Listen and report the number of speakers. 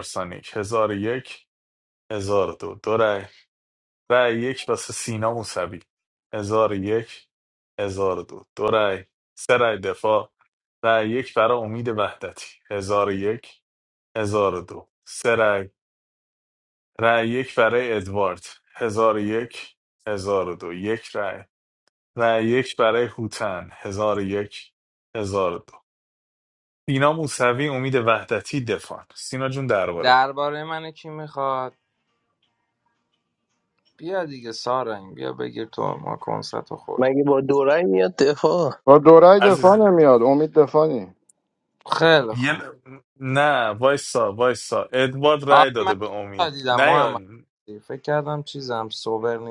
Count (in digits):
4